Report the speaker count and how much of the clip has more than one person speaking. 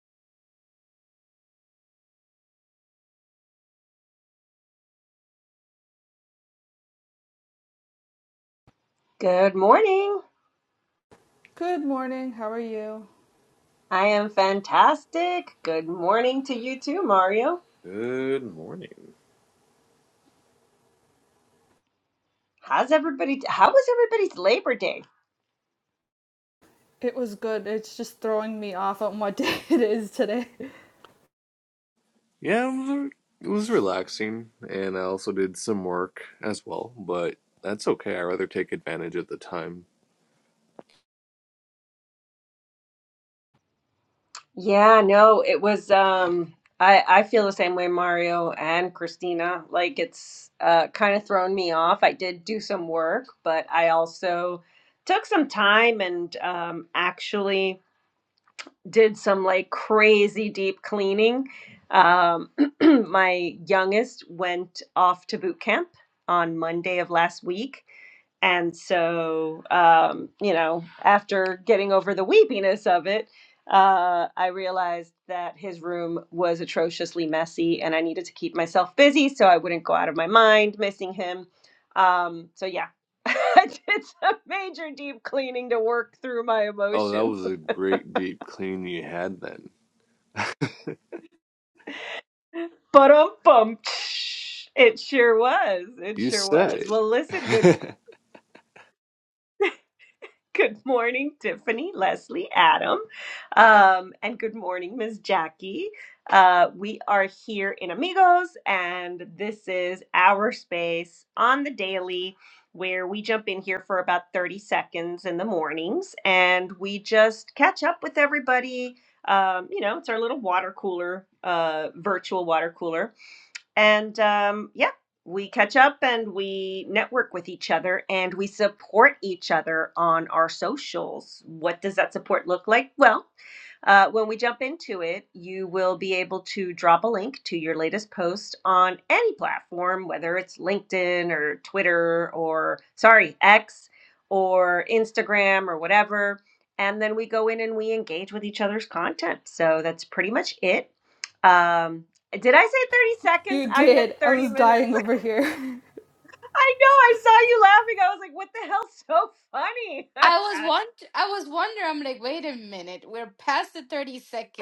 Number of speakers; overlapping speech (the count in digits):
4, about 2%